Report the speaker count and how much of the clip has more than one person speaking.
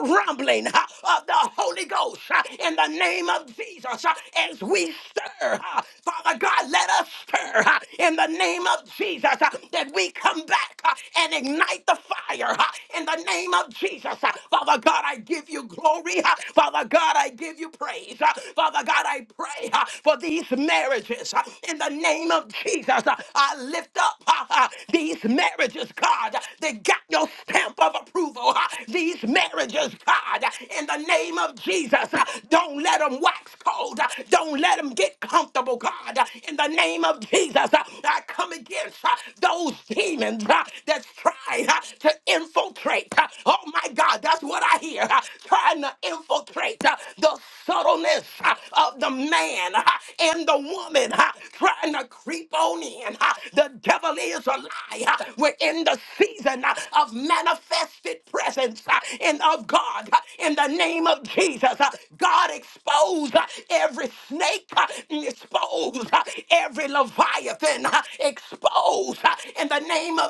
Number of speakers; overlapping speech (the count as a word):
one, no overlap